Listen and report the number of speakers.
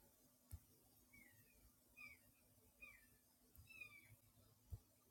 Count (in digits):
0